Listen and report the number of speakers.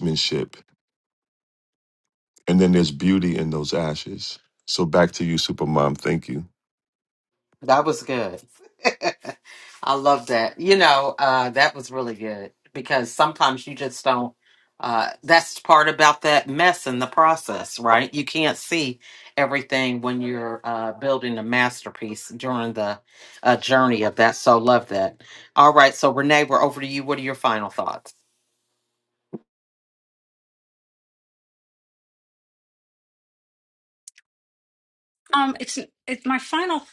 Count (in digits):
3